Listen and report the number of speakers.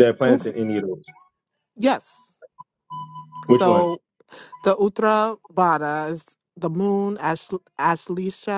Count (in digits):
2